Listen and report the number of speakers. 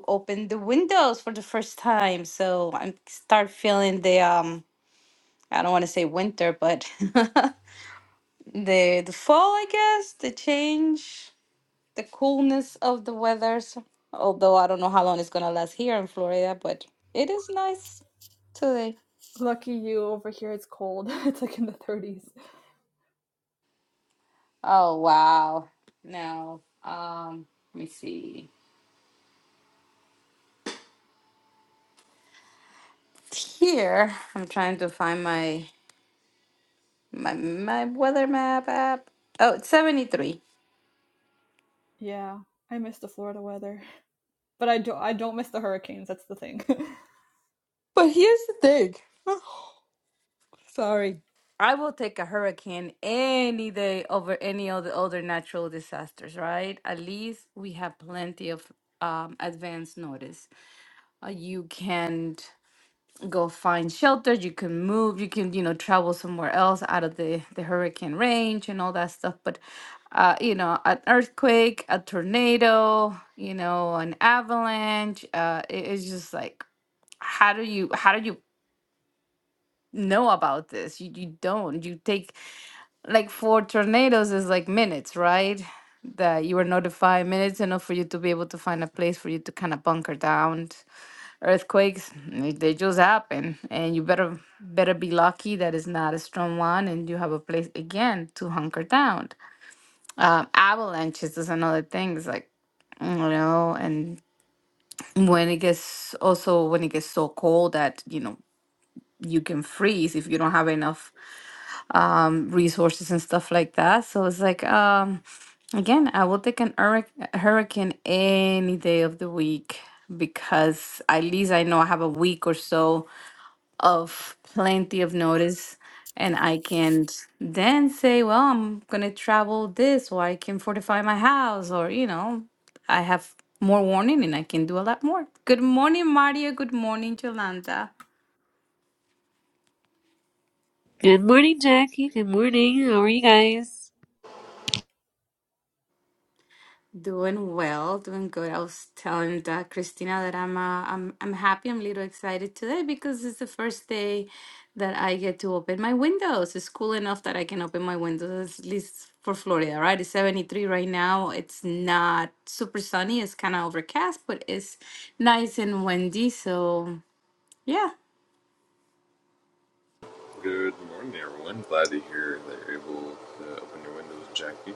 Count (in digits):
4